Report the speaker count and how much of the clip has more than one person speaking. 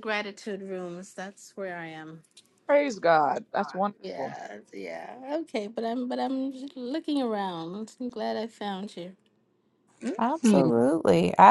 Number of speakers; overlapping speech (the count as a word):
three, about 5%